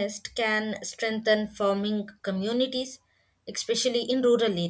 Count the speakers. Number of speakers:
1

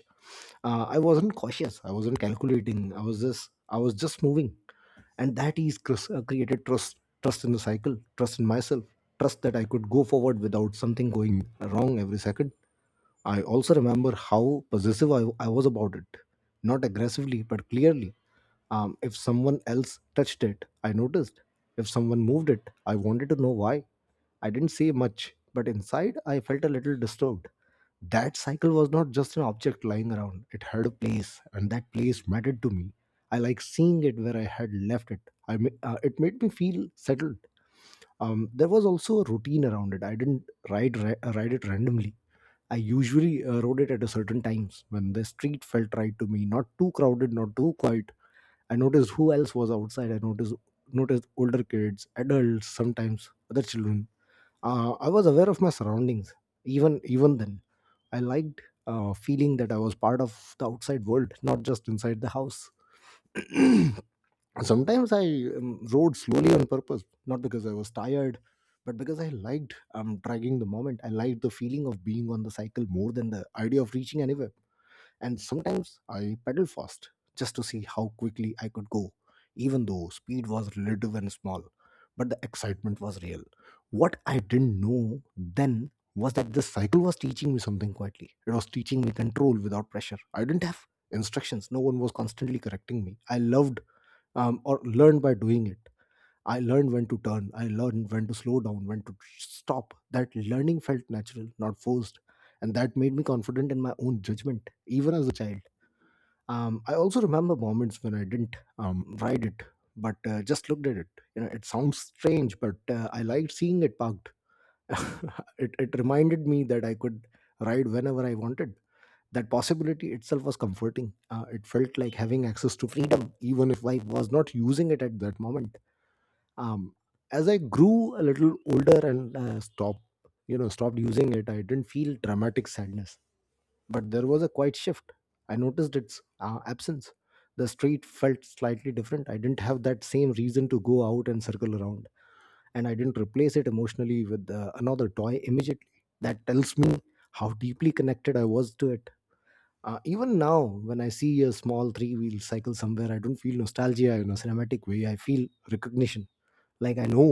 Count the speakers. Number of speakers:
1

